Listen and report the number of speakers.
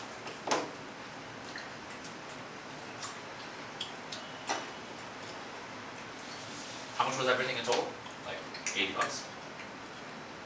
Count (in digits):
1